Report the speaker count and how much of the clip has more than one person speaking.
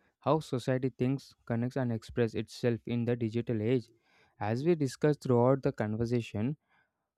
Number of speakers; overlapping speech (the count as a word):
one, no overlap